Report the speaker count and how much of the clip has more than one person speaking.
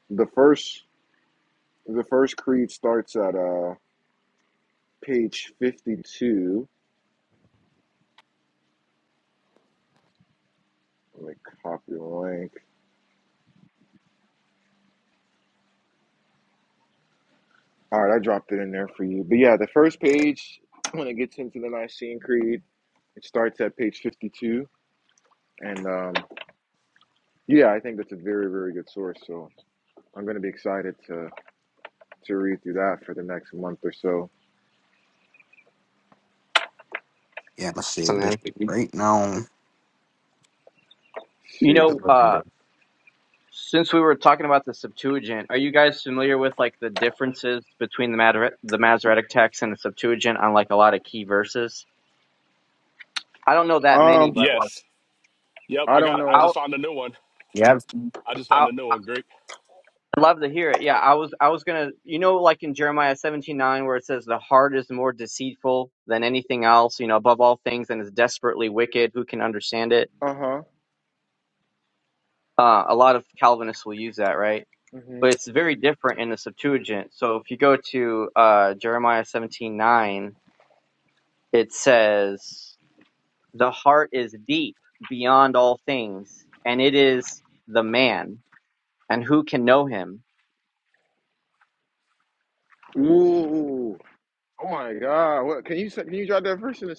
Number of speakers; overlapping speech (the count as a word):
four, about 3%